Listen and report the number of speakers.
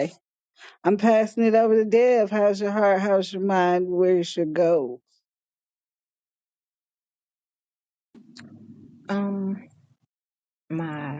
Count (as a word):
two